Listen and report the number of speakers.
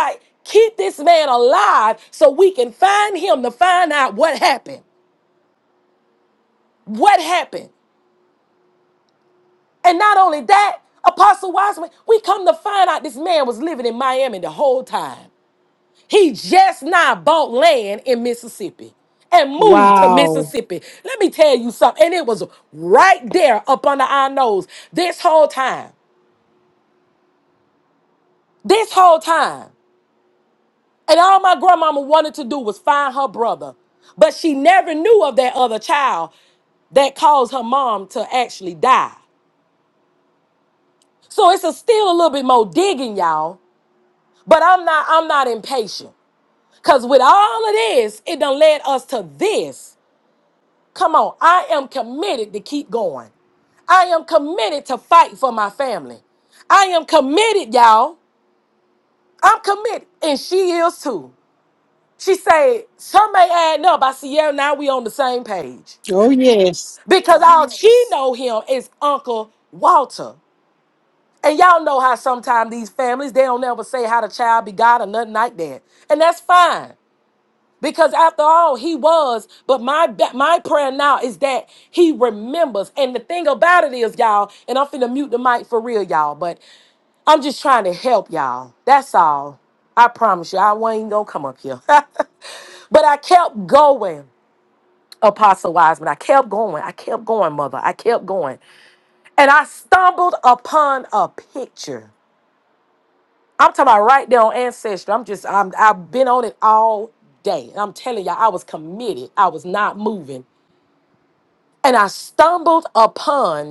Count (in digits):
2